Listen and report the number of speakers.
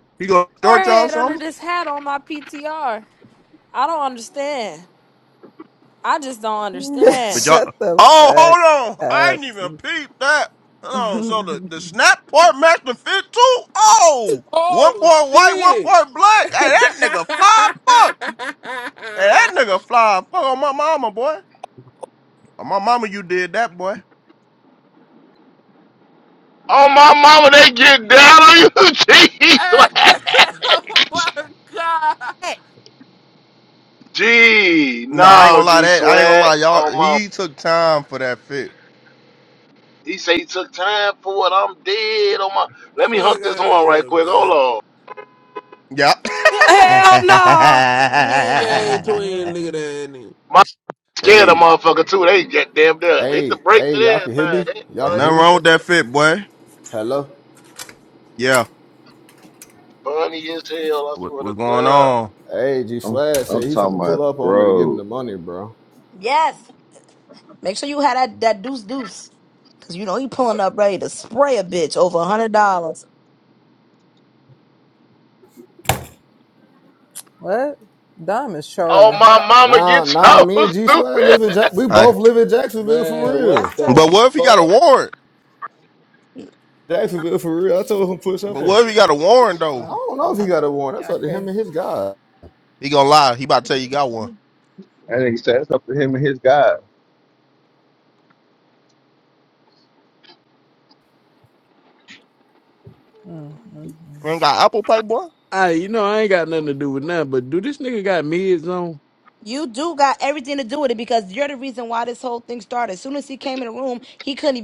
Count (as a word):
nine